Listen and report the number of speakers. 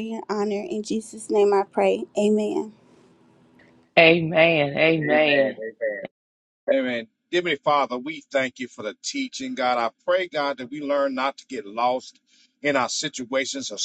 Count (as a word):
three